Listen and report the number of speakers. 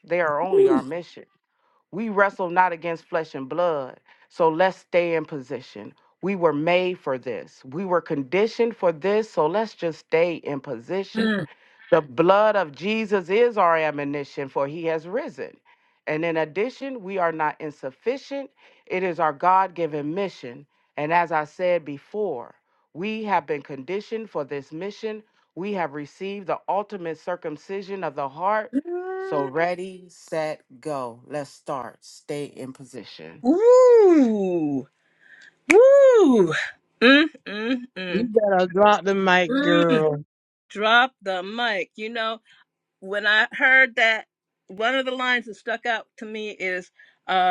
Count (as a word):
three